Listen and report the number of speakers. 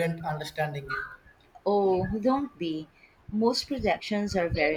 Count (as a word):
two